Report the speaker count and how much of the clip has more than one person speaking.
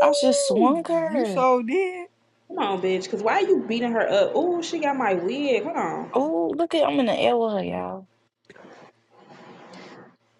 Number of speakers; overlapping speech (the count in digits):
3, about 11%